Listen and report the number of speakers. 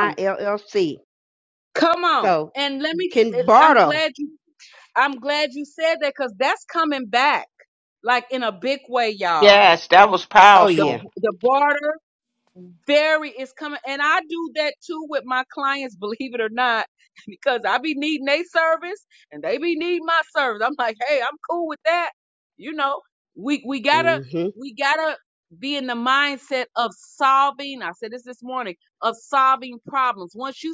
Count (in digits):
3